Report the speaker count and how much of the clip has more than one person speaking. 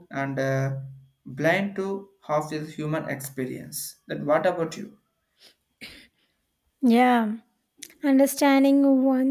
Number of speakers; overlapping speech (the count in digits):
2, no overlap